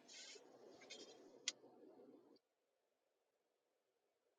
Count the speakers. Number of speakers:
zero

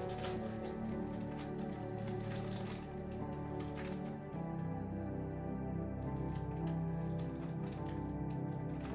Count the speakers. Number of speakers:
zero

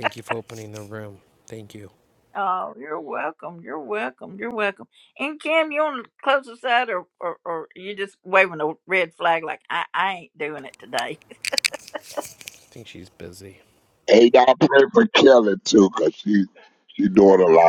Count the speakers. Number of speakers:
three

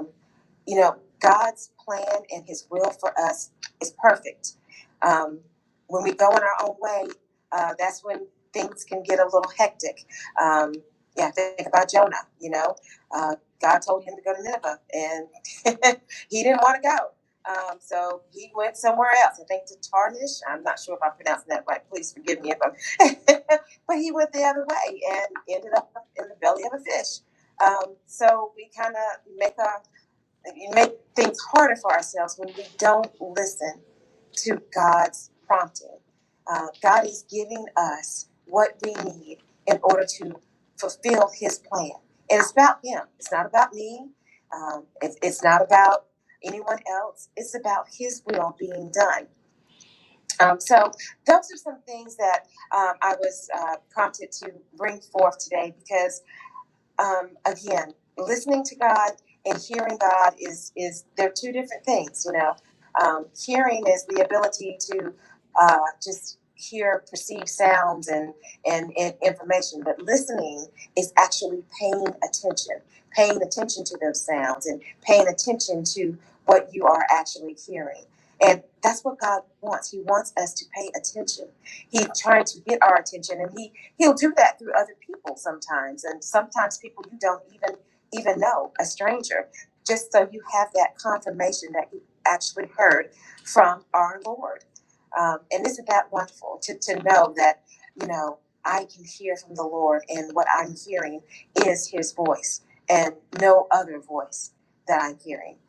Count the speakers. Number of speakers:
one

